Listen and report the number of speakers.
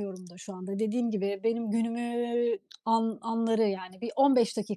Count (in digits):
1